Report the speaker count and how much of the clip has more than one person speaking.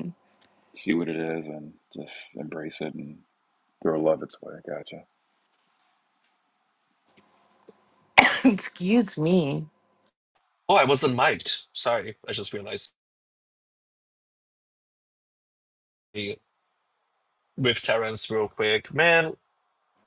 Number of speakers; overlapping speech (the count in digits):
3, no overlap